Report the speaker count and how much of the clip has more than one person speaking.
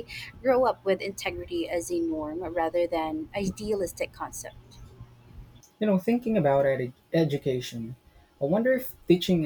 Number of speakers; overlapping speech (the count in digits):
2, no overlap